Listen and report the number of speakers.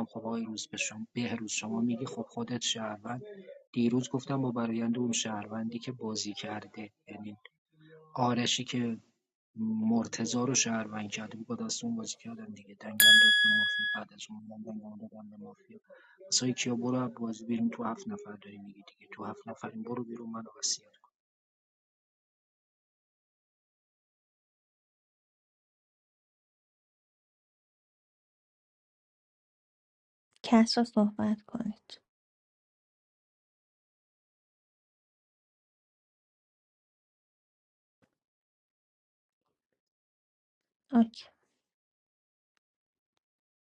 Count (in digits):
2